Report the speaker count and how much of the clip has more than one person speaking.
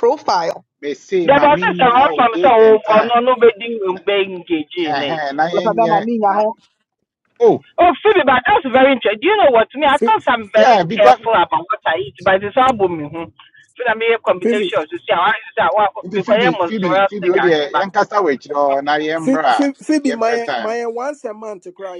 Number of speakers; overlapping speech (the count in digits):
4, about 29%